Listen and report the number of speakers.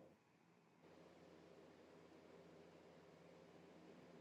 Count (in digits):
0